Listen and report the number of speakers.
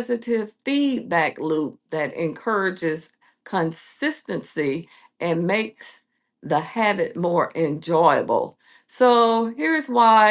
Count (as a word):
one